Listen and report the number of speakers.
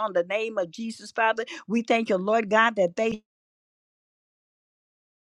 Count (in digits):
1